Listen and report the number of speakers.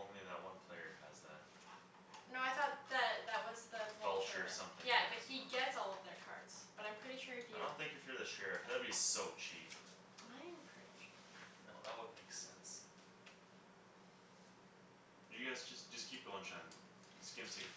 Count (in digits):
2